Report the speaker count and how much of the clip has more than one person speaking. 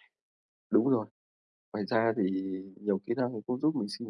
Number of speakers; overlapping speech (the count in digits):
1, no overlap